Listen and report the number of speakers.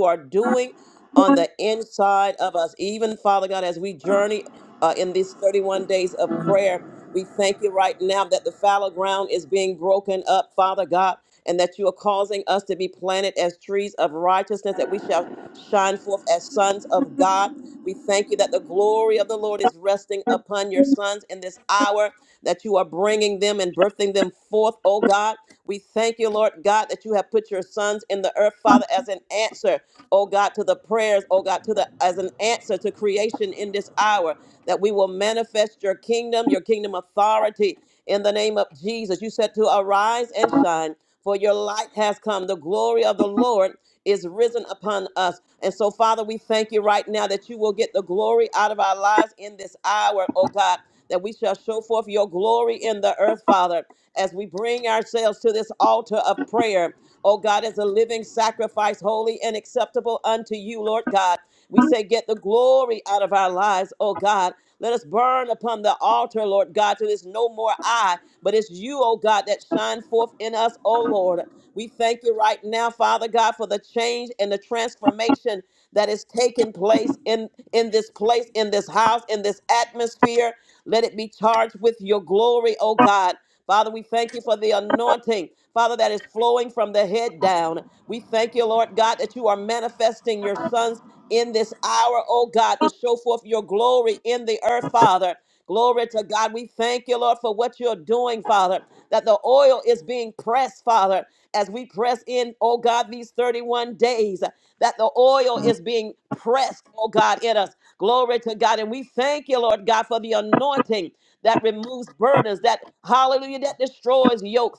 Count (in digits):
1